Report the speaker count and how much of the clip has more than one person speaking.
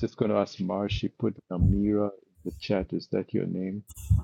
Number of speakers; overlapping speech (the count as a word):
one, no overlap